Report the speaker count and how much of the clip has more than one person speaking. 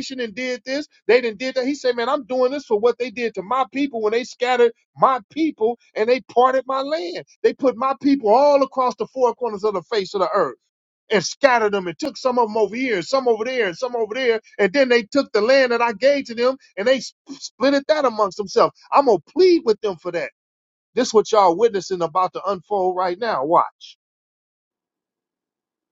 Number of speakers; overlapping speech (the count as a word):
one, no overlap